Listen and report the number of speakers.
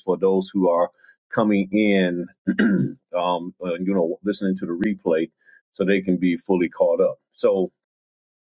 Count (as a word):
one